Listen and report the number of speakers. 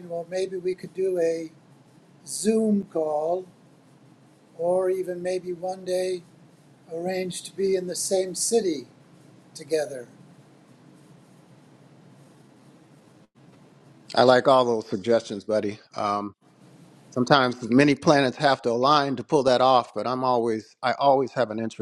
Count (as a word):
two